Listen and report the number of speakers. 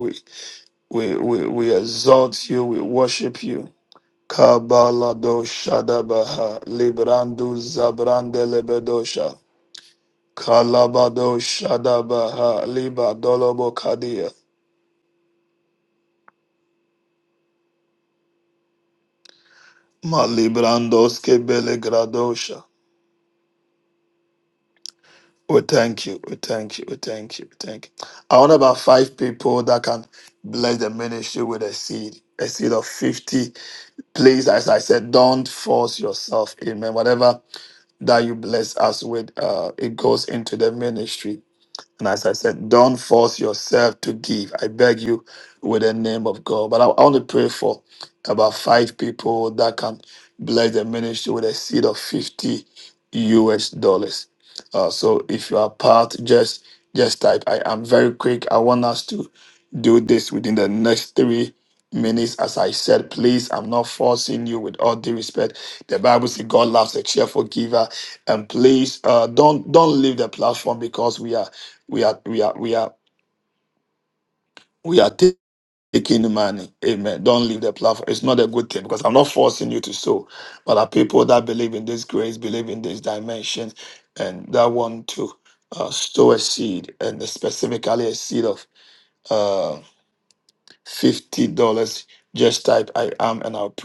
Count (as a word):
one